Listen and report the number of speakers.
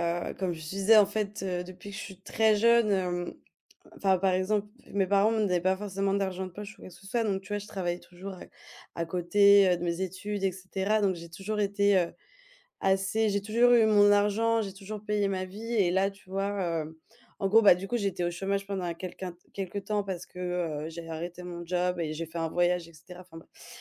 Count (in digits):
1